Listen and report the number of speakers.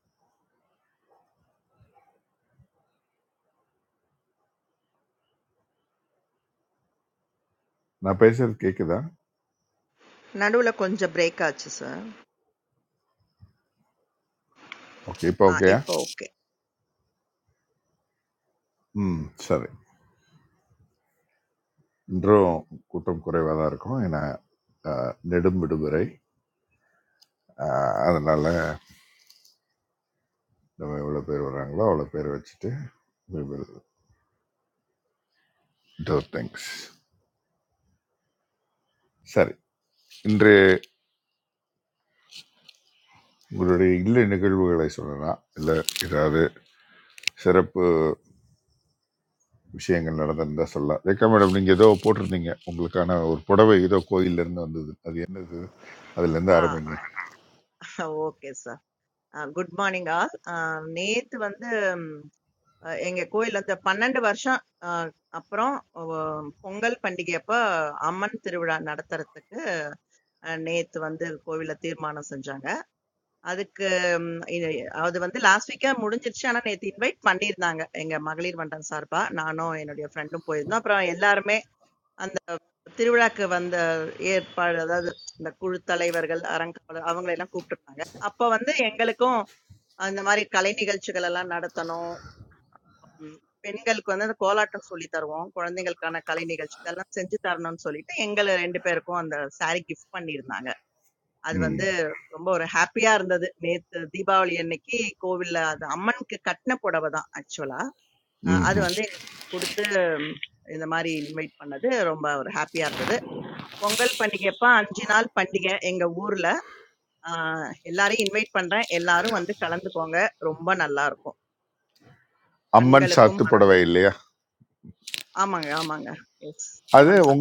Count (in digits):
2